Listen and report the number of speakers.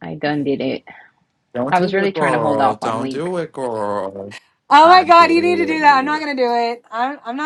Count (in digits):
3